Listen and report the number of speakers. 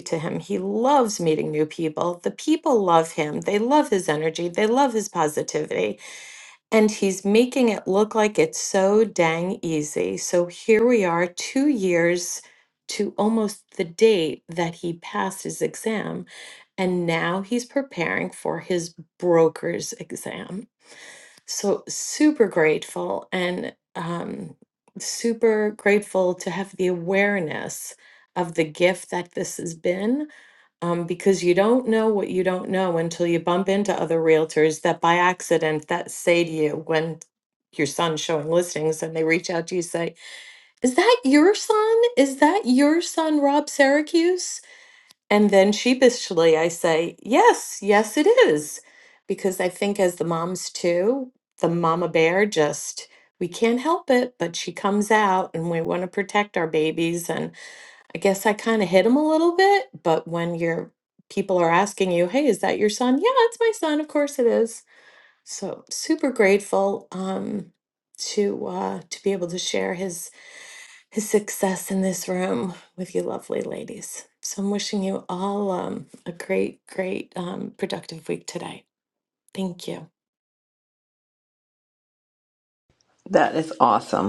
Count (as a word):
two